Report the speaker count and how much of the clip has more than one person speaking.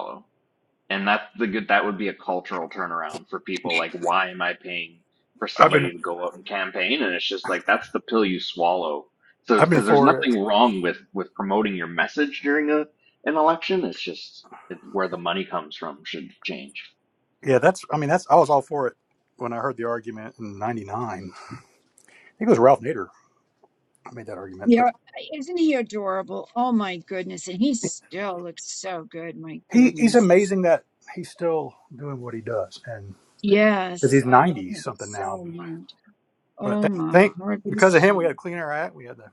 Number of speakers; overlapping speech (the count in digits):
3, about 11%